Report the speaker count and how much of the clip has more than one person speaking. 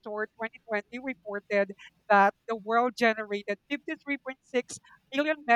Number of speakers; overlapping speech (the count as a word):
one, no overlap